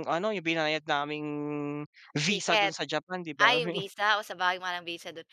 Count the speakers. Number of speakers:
2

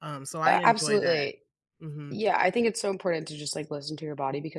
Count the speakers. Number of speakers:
2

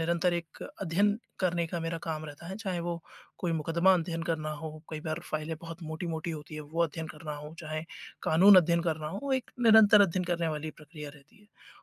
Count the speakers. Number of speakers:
1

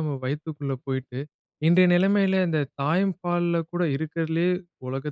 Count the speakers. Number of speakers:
1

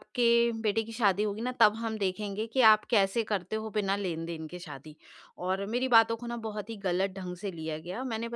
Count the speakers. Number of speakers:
1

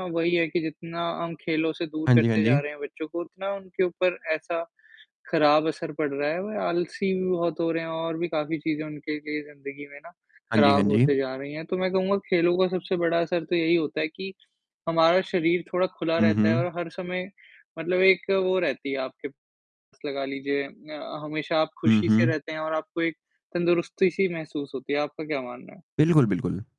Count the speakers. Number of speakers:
2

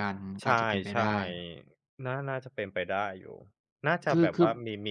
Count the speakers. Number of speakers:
2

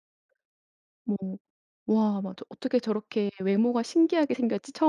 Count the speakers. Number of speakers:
1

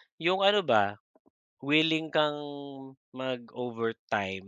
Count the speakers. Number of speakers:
1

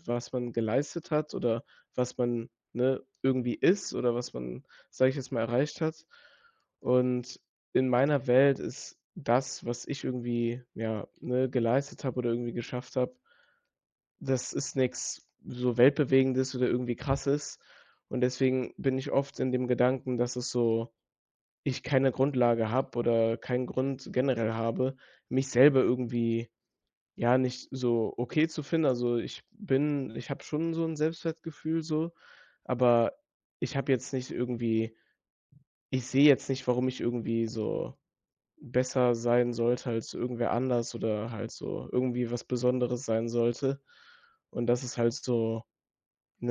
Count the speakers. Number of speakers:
1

